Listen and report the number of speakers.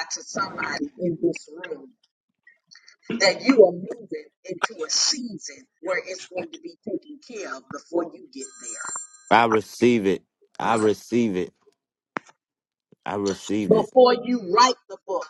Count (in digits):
2